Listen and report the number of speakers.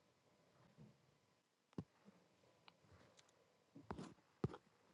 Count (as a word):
zero